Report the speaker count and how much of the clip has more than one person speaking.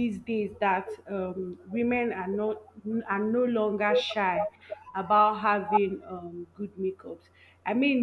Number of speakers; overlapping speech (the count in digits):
1, no overlap